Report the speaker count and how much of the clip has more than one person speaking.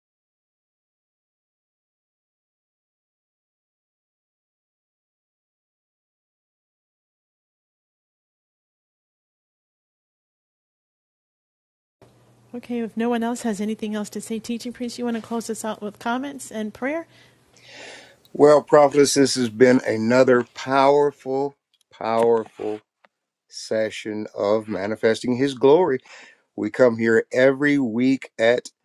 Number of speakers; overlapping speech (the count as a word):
two, no overlap